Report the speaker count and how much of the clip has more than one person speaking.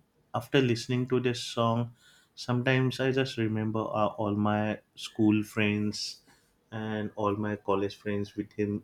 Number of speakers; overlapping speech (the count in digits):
1, no overlap